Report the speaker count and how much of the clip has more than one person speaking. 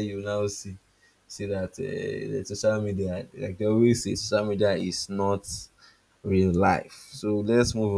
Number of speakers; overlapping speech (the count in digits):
1, no overlap